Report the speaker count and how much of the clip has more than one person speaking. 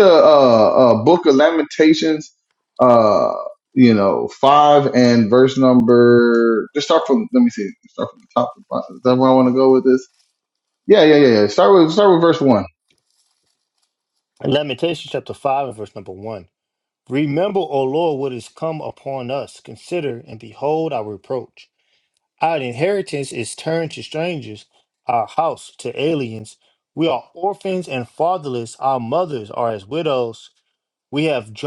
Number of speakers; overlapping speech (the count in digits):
2, no overlap